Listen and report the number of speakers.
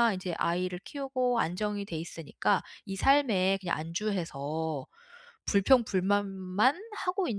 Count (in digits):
1